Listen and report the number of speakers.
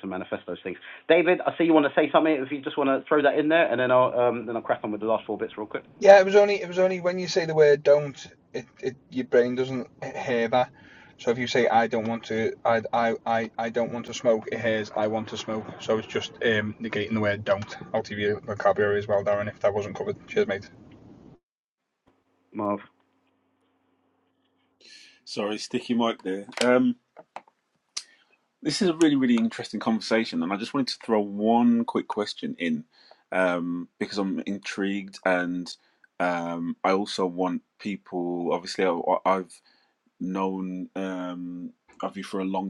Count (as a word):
three